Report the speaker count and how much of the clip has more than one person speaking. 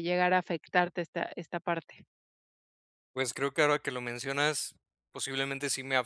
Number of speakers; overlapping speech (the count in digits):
2, no overlap